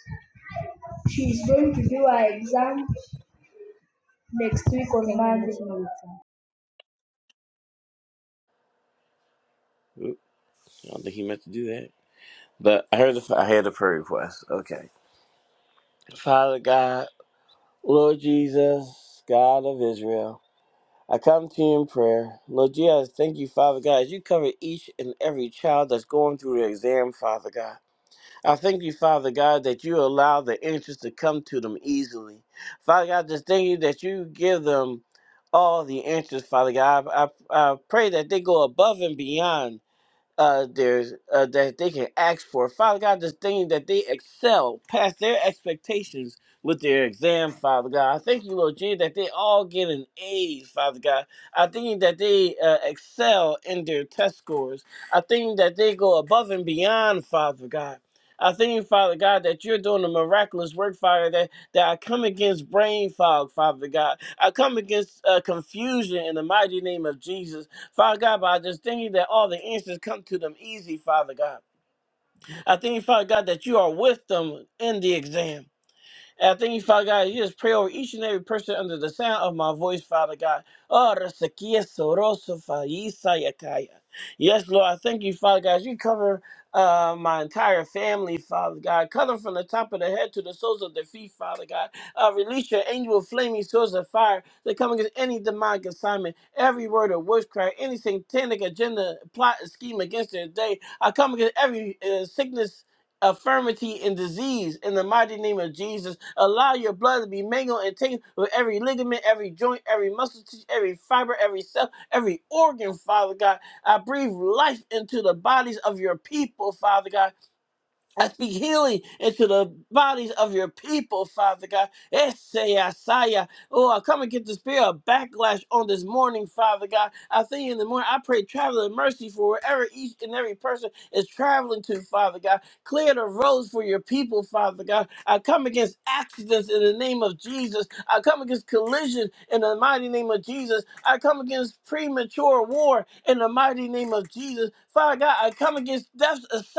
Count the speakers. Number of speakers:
2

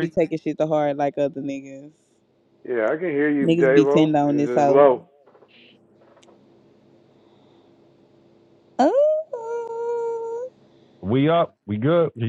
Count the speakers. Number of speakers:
3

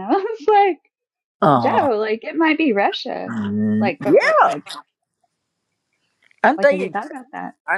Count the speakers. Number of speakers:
2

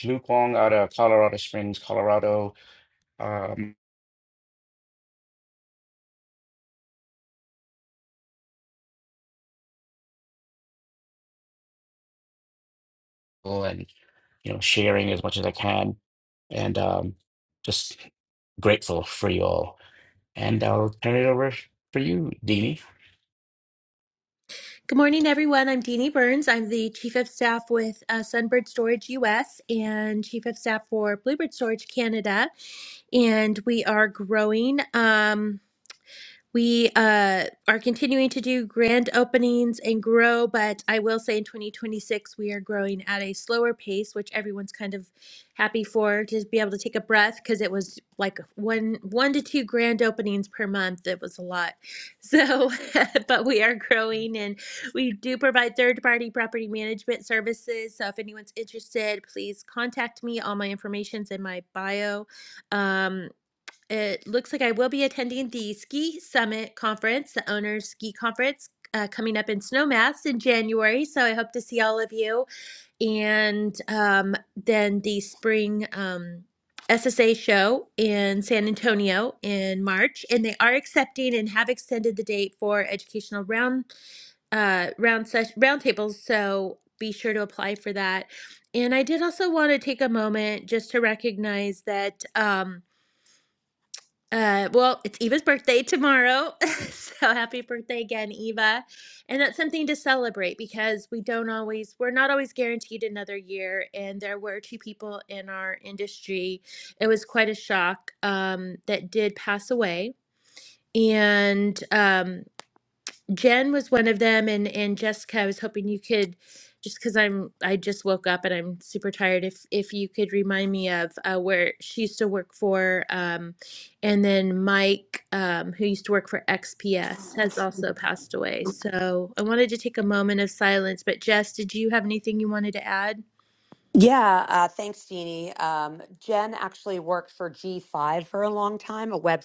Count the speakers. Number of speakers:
3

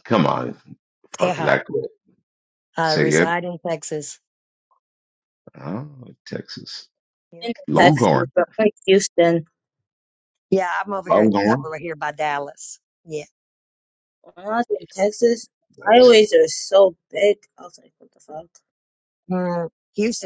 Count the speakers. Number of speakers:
3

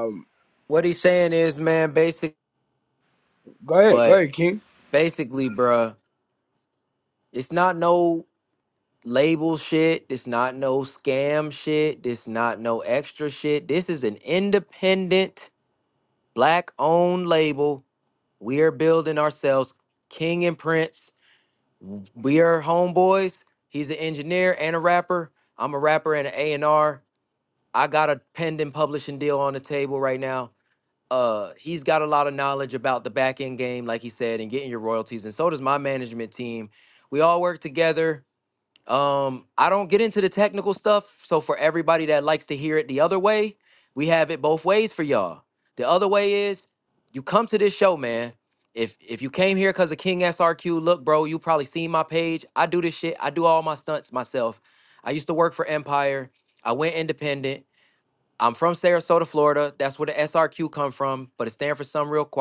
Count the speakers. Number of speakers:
2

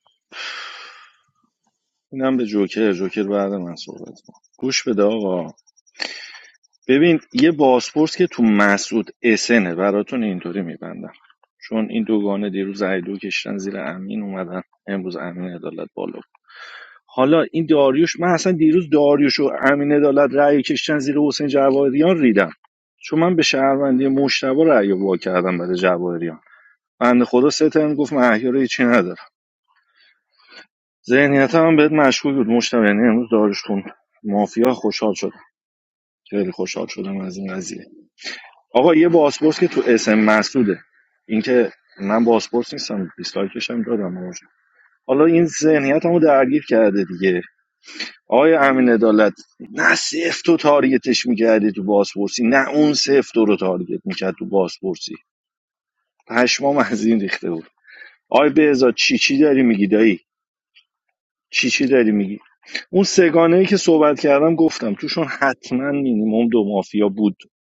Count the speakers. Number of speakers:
1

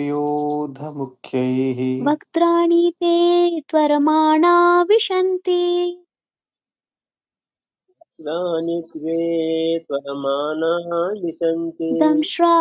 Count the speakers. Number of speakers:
3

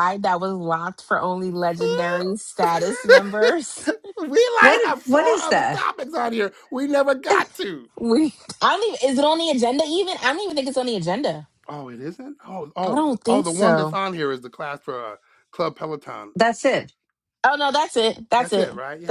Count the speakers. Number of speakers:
3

